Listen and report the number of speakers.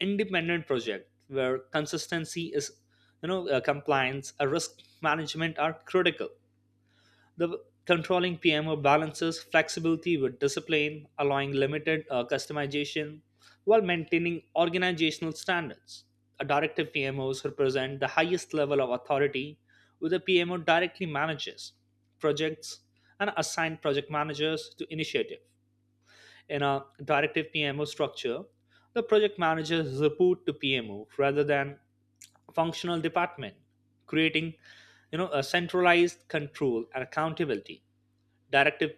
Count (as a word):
one